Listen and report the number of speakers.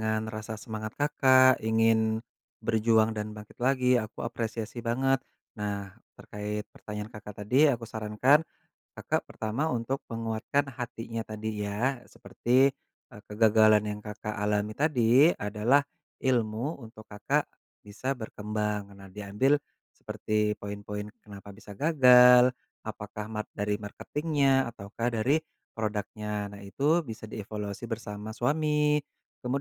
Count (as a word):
one